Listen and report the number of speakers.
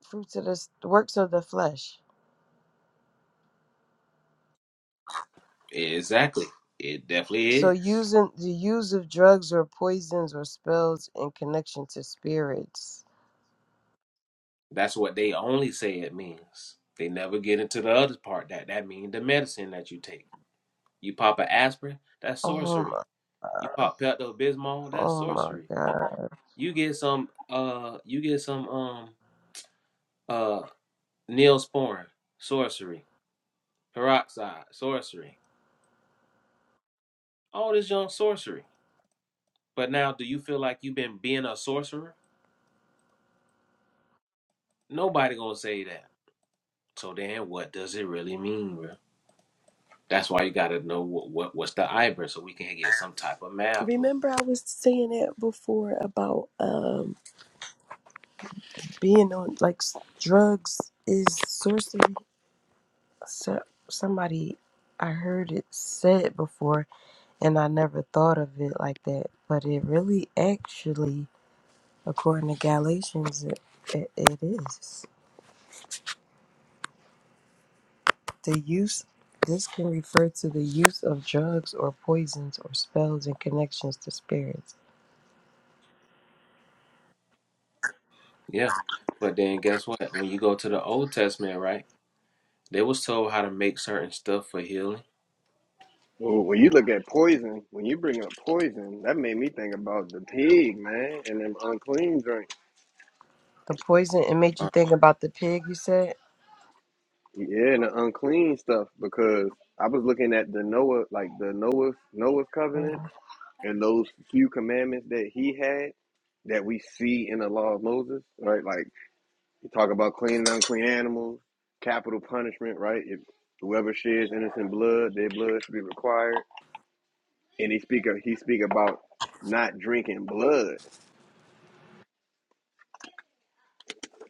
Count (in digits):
3